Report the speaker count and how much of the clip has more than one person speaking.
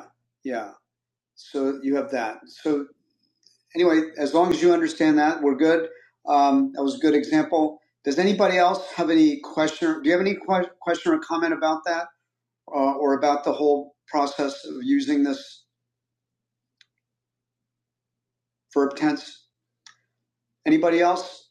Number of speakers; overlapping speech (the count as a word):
one, no overlap